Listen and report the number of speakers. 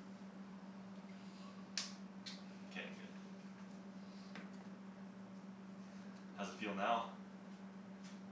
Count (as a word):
one